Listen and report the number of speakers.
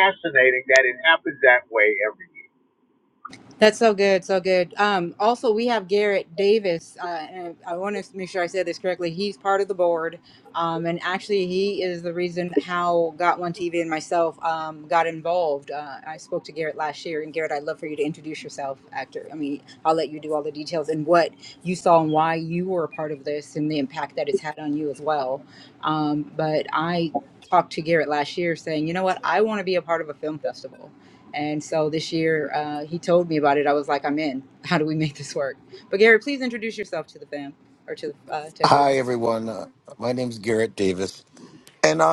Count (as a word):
three